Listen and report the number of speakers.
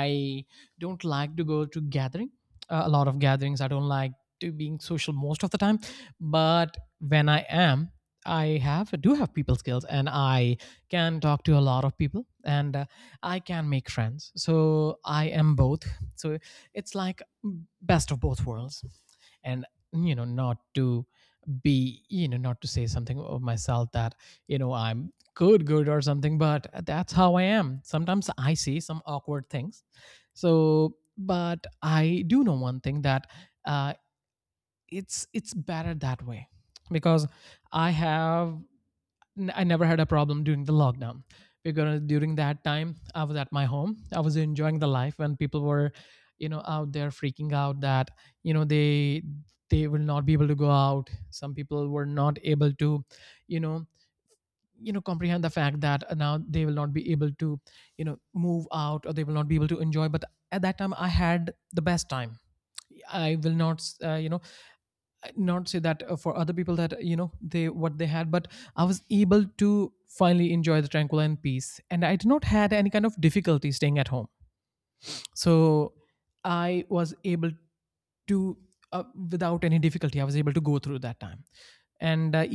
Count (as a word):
one